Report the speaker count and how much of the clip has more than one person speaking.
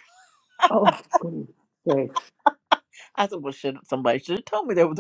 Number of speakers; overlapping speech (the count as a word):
two, no overlap